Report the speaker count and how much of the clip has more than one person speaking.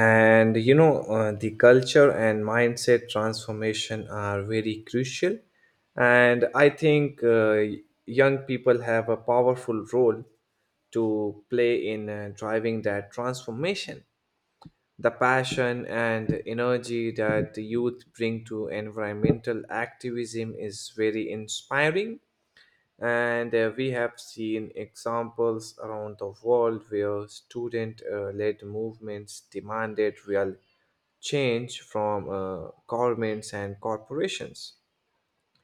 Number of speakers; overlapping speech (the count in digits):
1, no overlap